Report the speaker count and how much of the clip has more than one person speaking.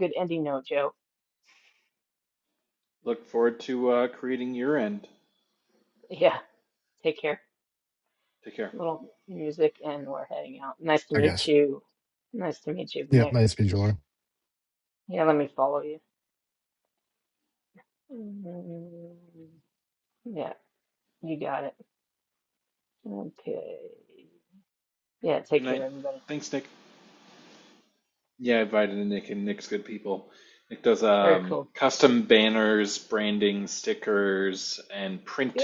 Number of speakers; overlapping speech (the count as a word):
three, about 4%